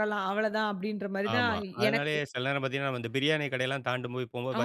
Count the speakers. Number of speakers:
two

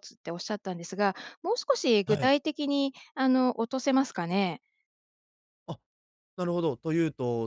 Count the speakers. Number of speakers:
two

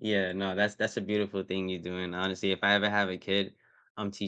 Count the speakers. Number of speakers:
one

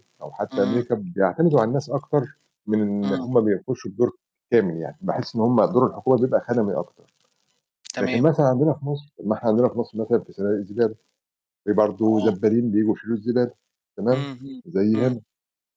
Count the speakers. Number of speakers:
two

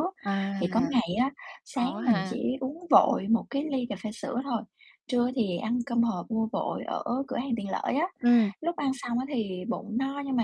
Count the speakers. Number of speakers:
two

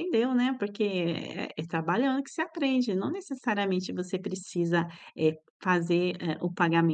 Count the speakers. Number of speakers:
one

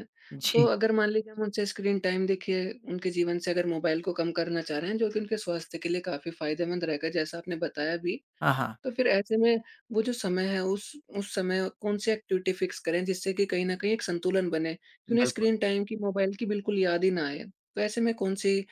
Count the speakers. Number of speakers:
two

